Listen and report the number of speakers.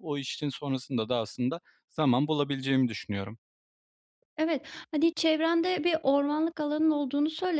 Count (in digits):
2